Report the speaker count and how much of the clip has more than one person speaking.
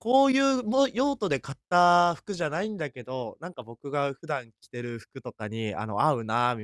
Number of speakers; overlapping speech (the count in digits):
1, no overlap